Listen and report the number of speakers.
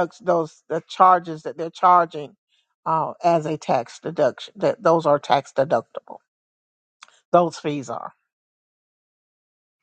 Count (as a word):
one